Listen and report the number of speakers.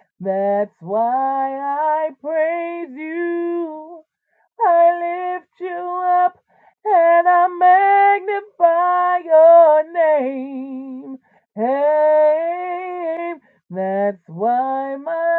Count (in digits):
1